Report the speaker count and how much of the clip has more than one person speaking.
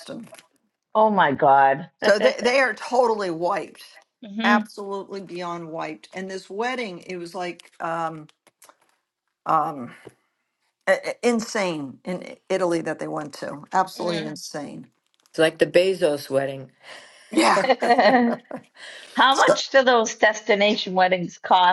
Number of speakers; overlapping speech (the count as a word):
three, about 3%